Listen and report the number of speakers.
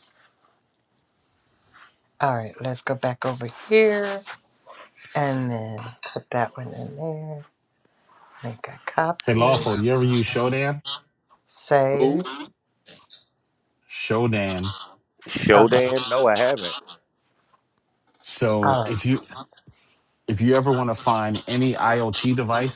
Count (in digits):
3